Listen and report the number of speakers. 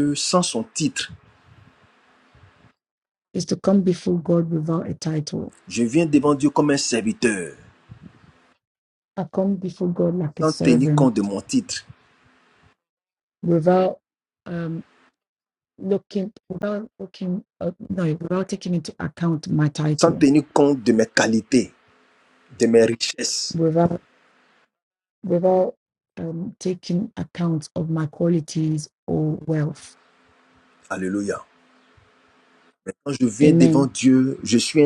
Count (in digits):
2